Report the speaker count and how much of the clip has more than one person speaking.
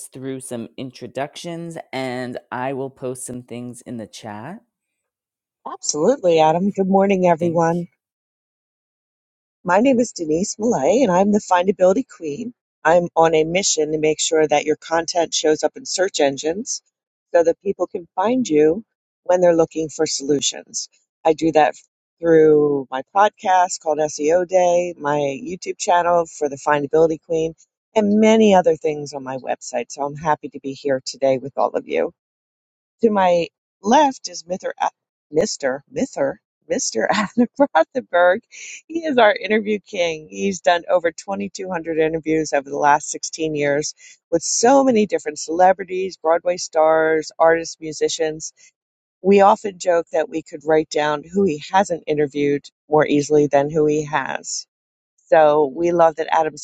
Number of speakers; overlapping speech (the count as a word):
two, under 1%